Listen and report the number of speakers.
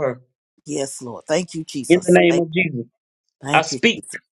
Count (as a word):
two